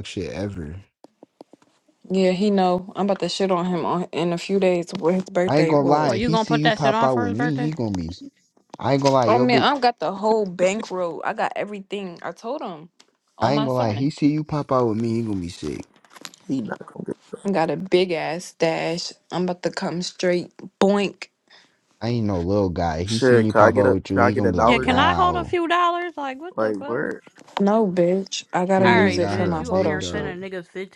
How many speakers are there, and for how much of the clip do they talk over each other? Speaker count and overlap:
4, about 25%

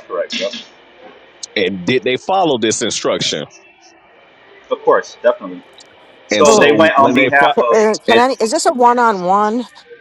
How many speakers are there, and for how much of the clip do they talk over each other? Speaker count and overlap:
3, about 17%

